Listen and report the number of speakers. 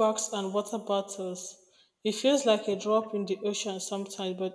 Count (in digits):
1